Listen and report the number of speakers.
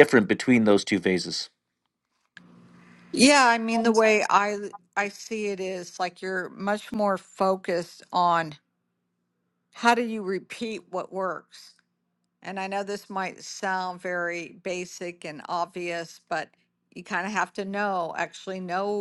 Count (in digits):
2